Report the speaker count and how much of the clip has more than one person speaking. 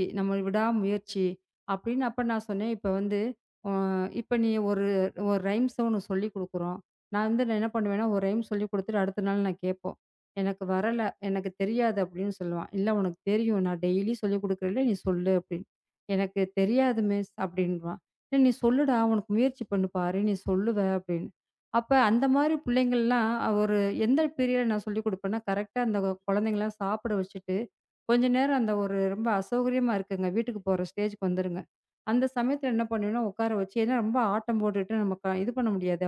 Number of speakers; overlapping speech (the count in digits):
1, no overlap